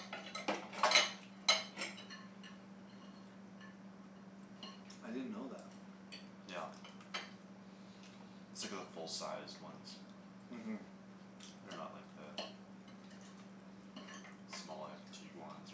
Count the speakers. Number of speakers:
two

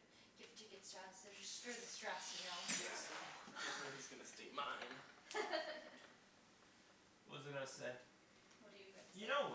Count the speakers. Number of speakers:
three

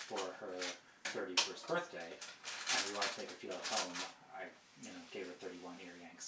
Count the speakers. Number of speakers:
one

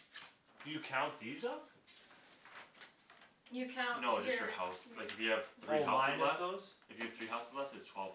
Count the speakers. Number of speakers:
three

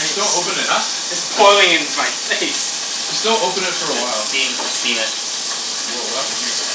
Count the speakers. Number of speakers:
three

